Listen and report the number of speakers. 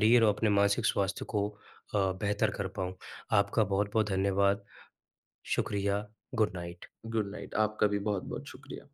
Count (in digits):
2